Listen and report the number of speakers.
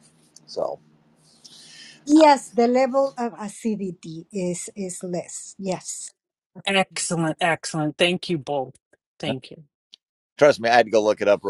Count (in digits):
3